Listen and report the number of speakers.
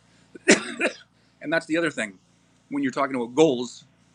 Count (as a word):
one